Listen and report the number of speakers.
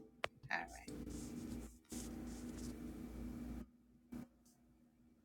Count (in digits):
0